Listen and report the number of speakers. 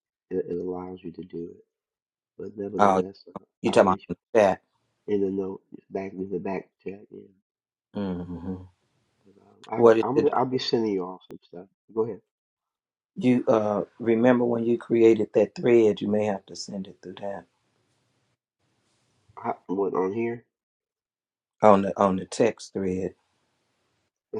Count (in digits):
2